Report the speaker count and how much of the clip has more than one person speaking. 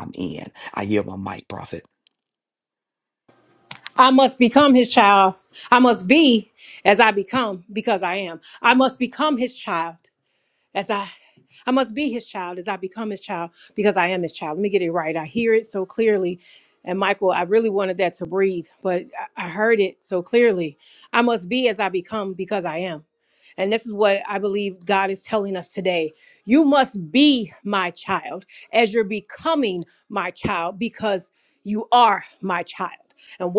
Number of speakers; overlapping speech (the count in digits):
2, no overlap